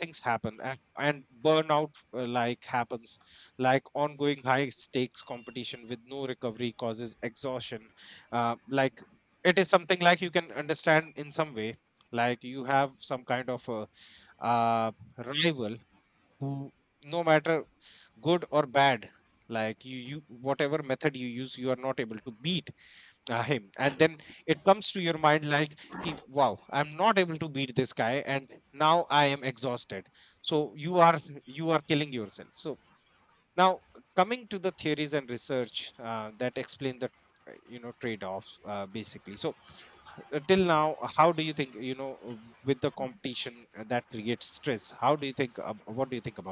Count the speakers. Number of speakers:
one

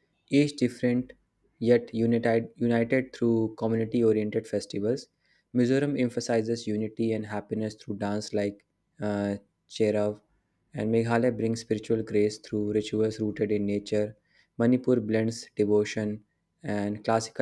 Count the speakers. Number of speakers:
one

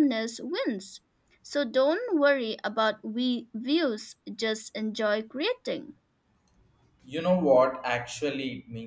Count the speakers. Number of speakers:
two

